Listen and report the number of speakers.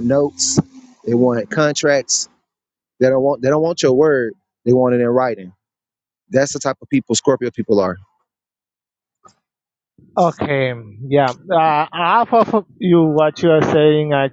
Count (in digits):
2